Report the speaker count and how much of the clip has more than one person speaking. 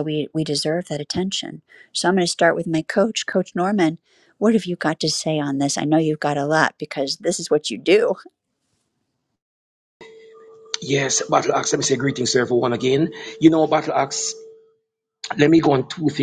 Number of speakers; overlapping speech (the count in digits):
2, no overlap